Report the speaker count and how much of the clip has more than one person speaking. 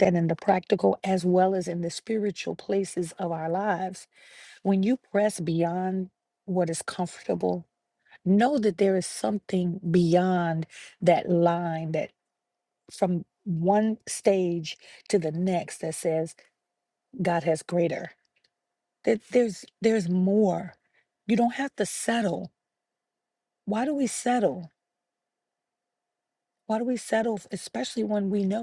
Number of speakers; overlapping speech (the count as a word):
one, no overlap